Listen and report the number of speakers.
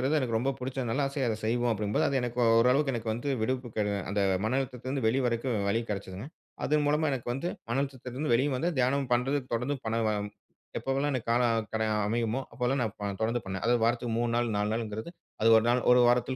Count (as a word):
one